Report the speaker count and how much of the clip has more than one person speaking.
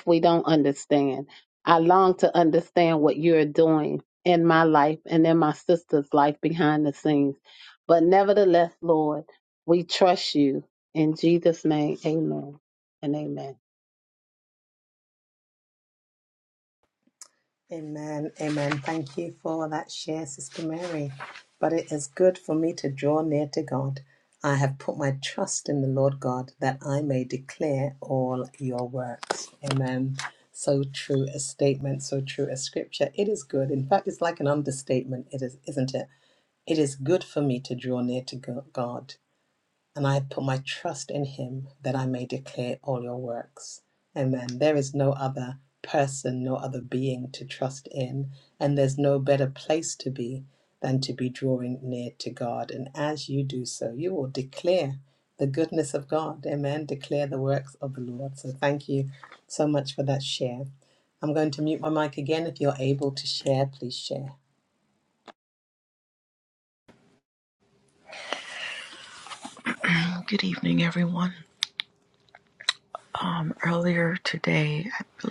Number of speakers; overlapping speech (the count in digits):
3, no overlap